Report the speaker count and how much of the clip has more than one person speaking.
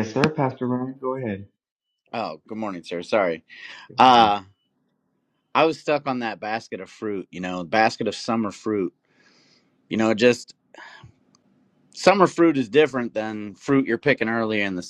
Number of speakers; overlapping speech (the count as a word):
two, about 2%